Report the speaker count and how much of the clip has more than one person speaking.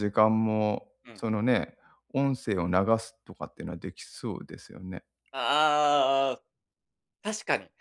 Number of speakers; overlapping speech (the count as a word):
two, under 1%